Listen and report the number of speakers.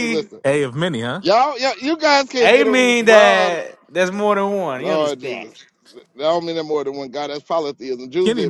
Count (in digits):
3